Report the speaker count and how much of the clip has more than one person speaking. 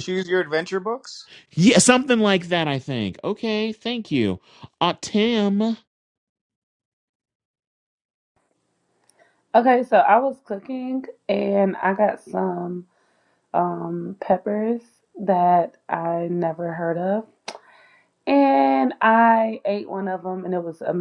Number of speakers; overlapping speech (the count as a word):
three, under 1%